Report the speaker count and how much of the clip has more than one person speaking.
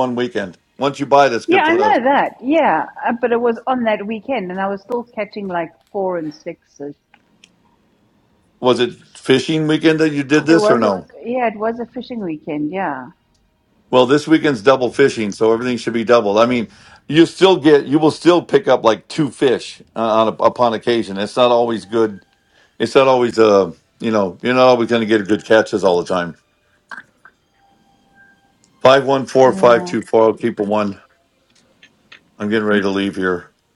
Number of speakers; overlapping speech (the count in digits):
2, about 5%